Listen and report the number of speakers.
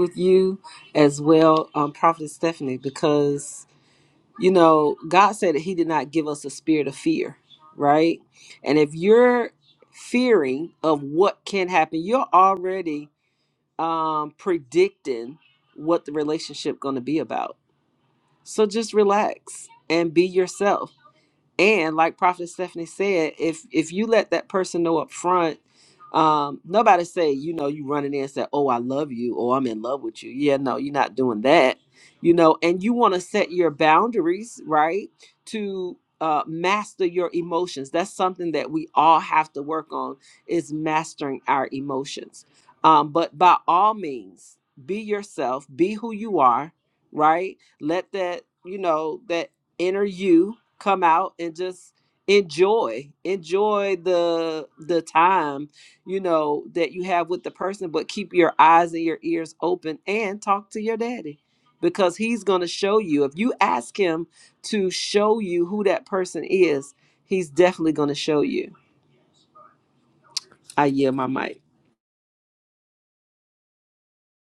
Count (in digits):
1